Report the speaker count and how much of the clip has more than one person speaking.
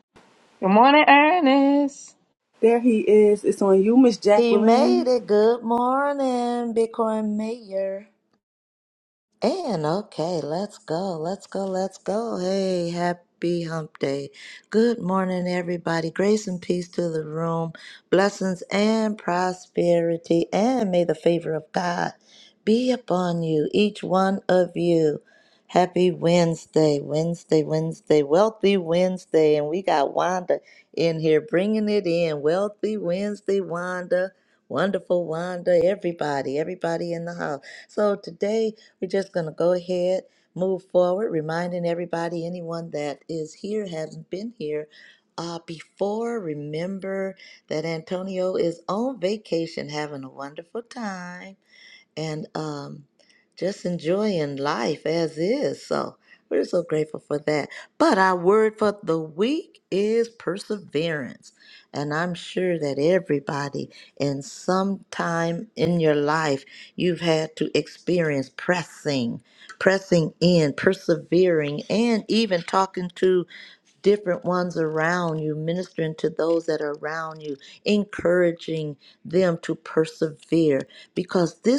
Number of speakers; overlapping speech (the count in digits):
3, about 1%